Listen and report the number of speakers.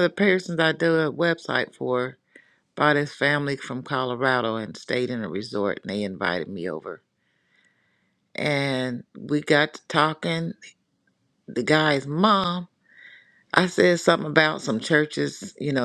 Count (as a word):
one